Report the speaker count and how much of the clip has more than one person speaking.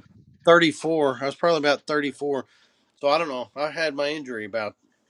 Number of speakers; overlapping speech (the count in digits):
1, no overlap